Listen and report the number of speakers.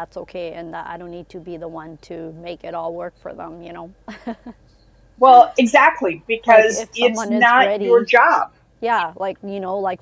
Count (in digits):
2